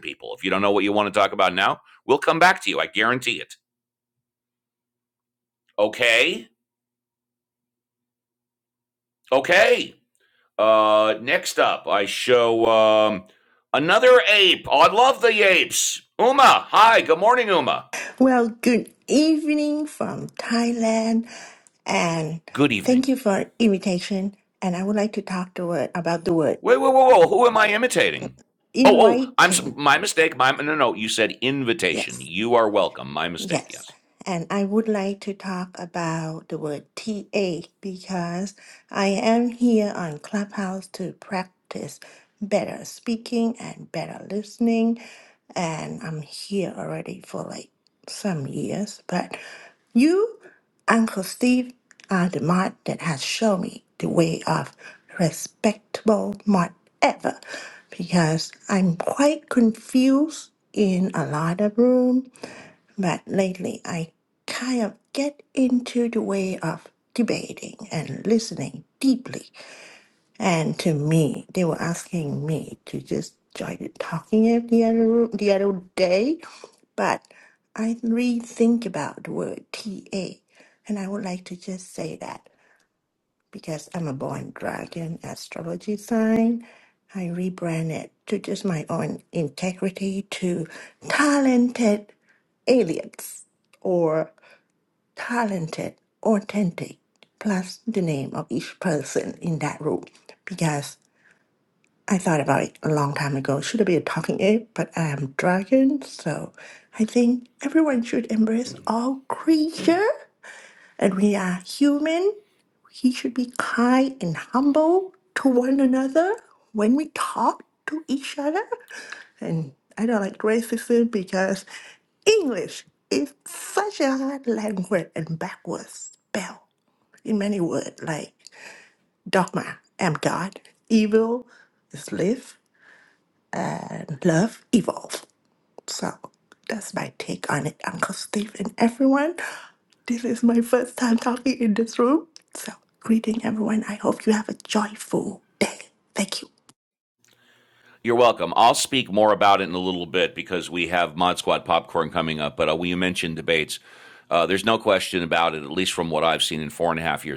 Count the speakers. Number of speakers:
two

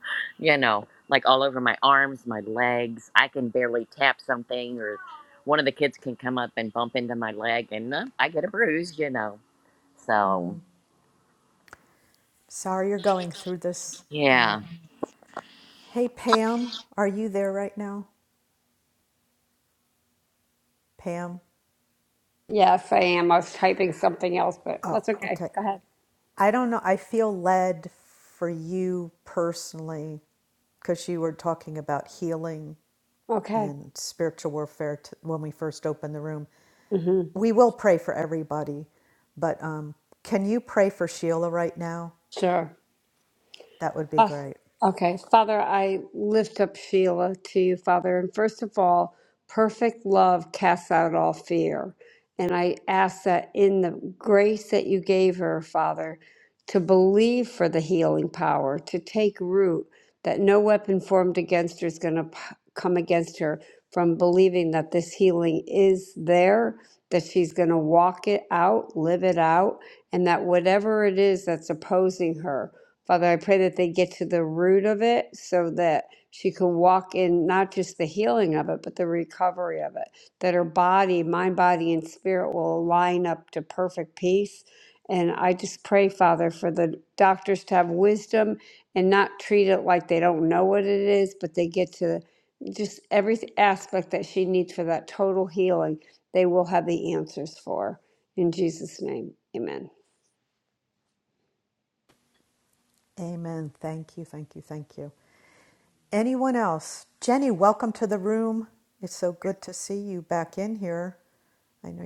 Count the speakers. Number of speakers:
three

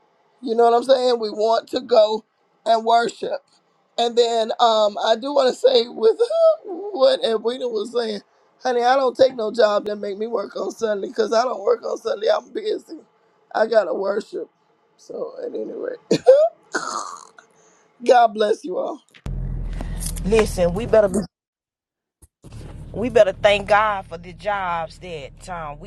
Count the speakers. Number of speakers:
two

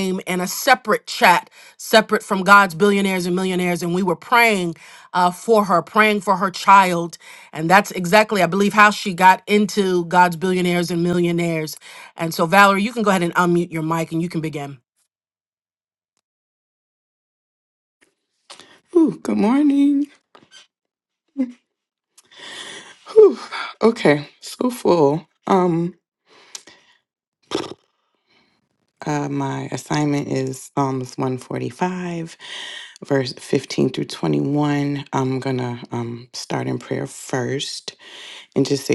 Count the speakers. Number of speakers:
two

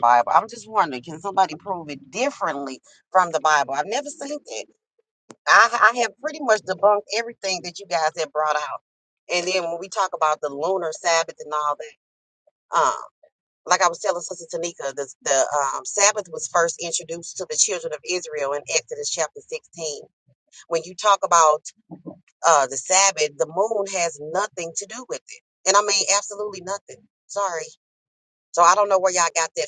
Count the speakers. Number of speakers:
one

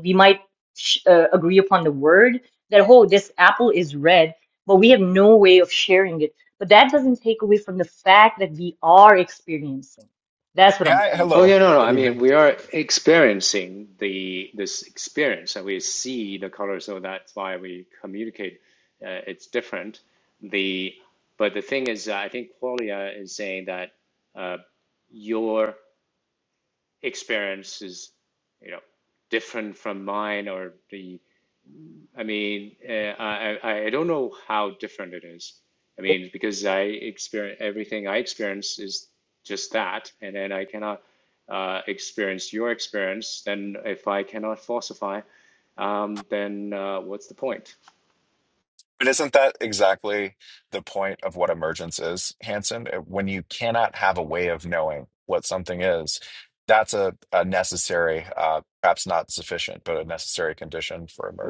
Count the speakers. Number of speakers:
three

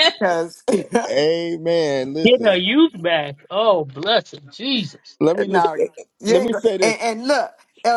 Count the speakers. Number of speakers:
three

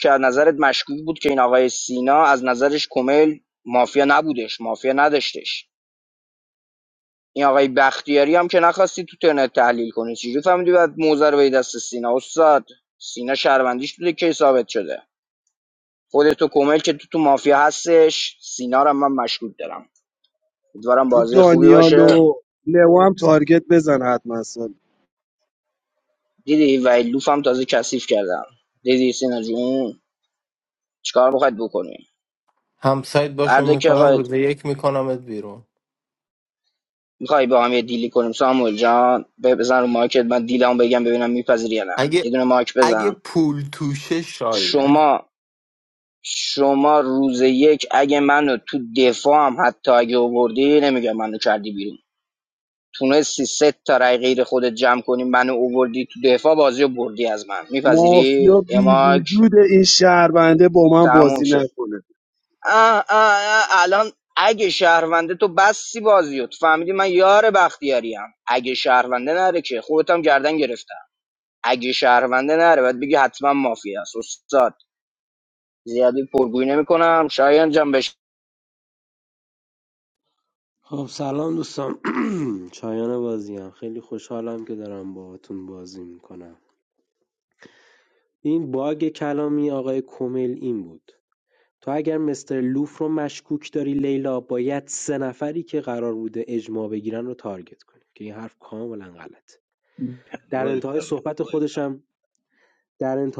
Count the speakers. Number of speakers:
four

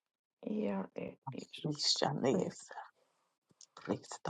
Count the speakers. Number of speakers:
two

